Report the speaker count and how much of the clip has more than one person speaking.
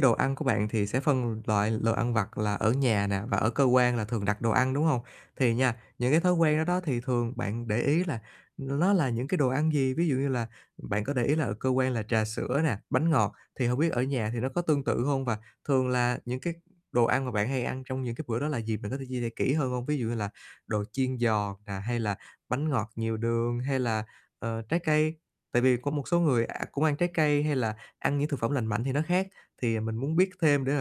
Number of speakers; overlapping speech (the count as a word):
one, no overlap